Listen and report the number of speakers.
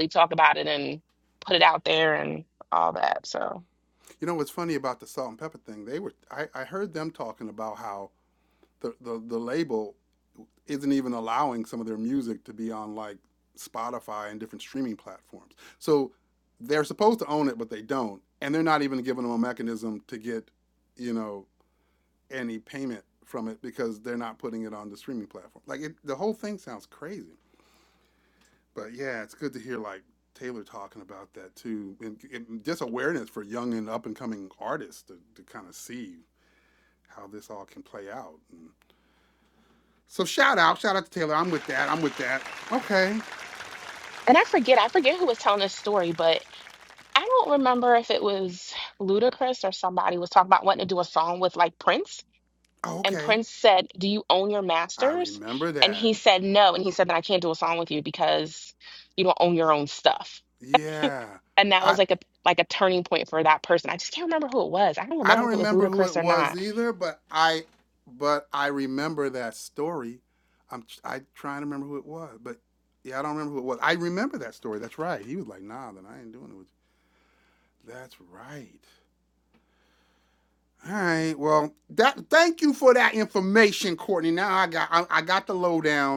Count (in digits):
2